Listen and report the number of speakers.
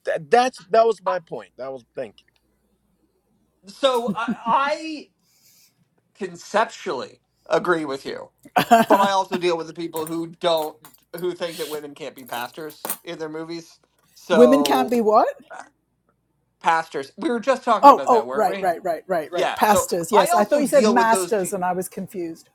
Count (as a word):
three